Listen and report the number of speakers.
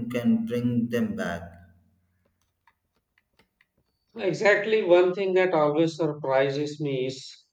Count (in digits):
2